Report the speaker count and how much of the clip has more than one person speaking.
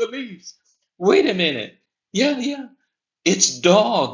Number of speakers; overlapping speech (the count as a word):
one, no overlap